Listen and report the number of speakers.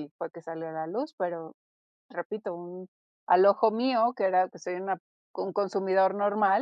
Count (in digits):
1